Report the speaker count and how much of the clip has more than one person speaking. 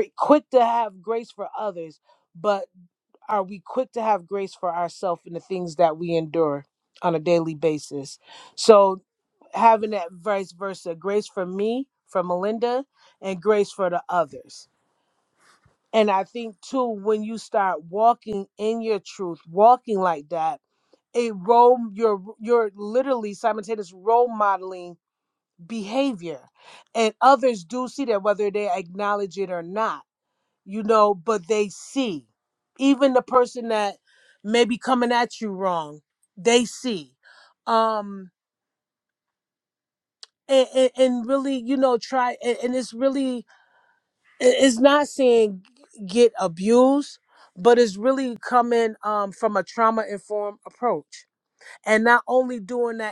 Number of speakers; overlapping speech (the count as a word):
one, no overlap